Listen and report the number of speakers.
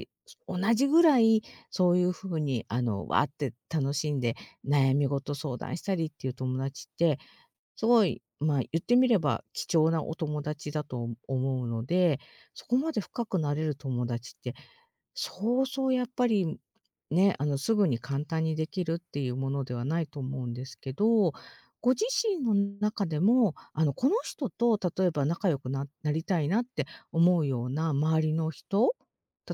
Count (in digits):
1